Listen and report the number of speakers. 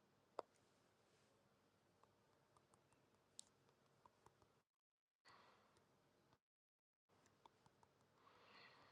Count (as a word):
zero